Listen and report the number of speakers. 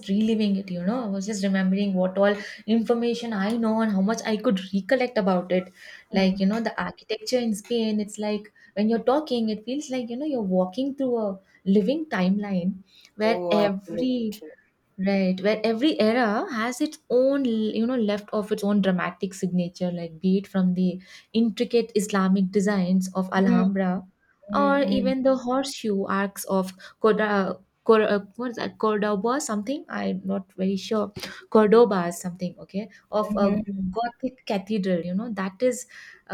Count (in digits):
2